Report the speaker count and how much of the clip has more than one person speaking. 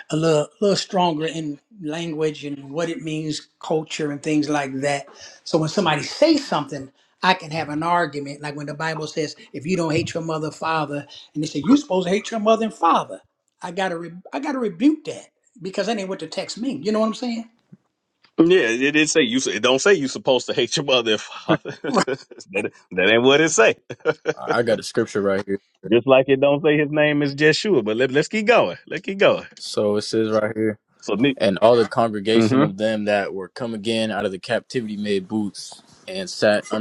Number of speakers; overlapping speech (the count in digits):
3, about 1%